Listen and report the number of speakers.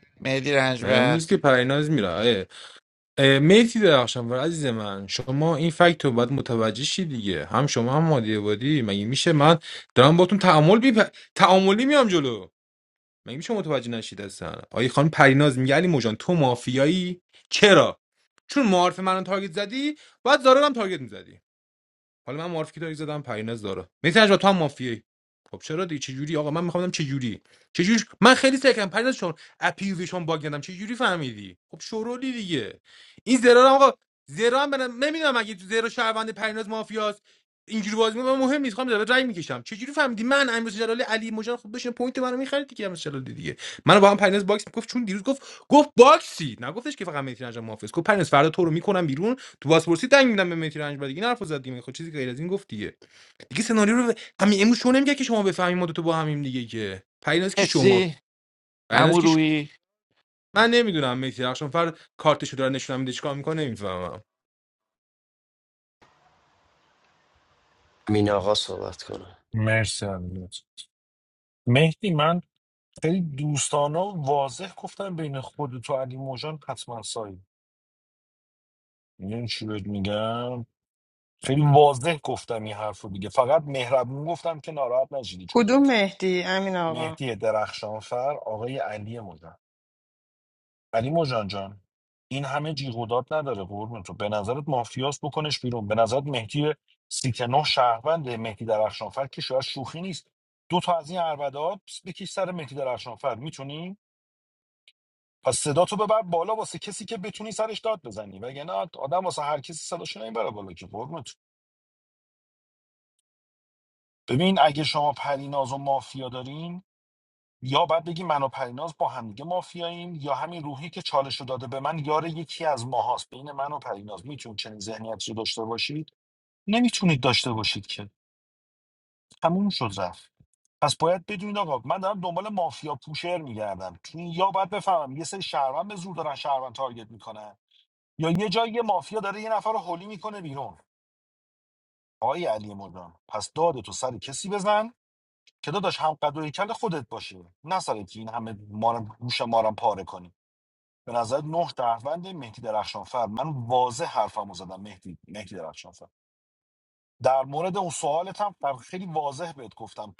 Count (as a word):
five